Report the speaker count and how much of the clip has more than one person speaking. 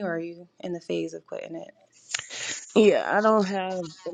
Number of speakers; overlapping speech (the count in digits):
2, no overlap